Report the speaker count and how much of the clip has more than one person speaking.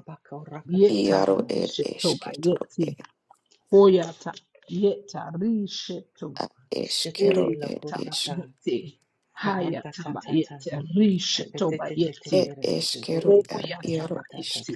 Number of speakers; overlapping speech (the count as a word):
three, about 52%